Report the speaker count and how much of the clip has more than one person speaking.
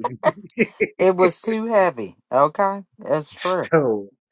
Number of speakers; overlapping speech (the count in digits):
2, about 15%